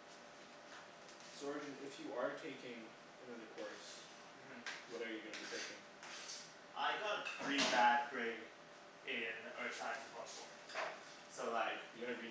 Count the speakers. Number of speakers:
2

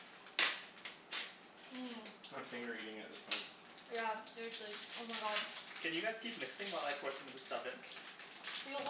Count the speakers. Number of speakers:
3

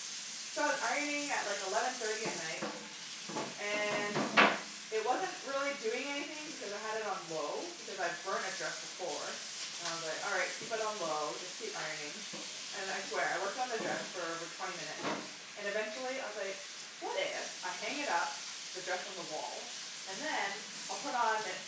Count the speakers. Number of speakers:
1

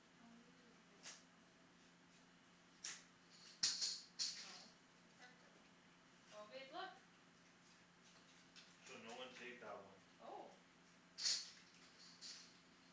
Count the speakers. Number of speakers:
2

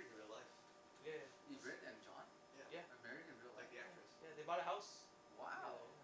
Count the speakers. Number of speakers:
3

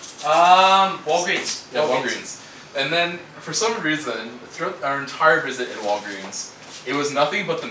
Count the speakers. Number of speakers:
2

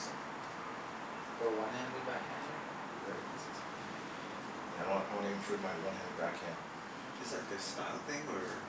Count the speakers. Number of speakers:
3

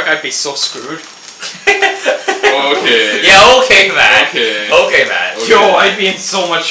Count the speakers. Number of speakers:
3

